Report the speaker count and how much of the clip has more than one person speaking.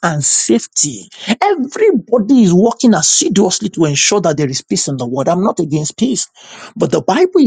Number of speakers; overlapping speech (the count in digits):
1, no overlap